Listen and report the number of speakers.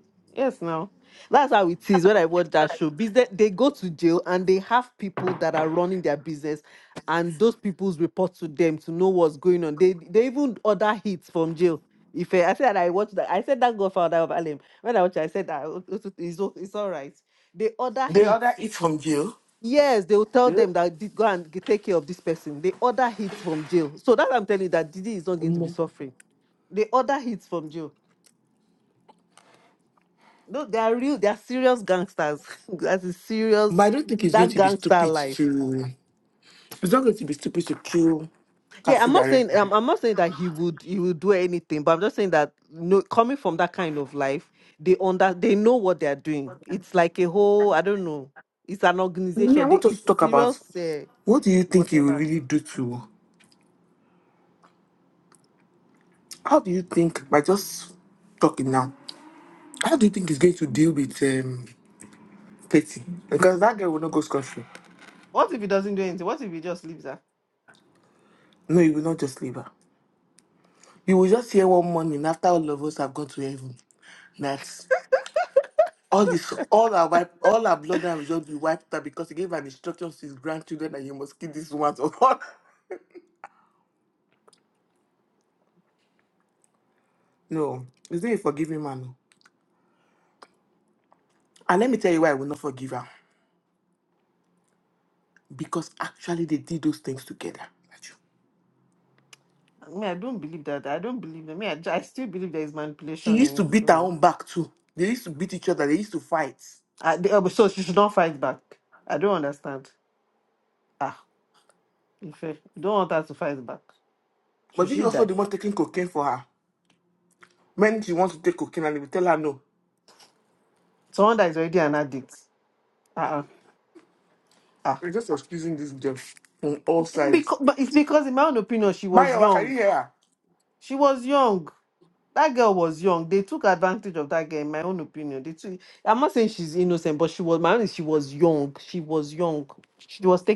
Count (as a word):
two